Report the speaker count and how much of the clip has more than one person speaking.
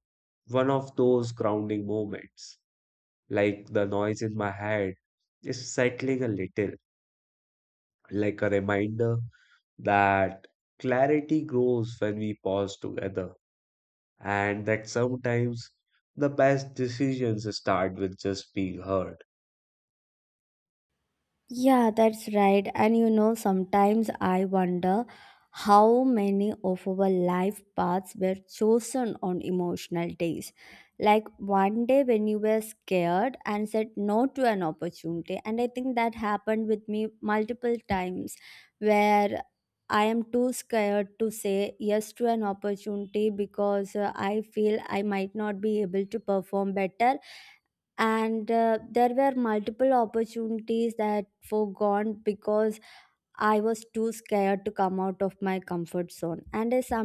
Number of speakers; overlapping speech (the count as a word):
two, no overlap